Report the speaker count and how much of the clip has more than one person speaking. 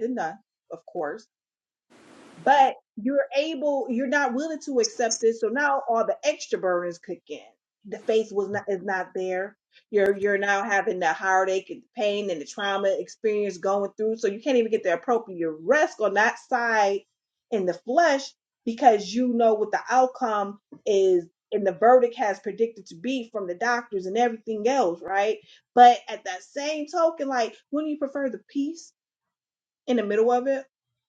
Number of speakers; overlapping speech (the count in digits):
1, no overlap